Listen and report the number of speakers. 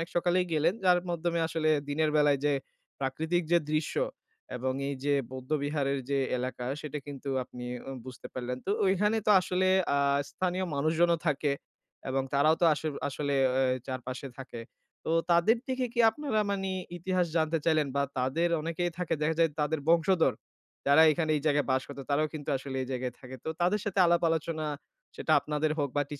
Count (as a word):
one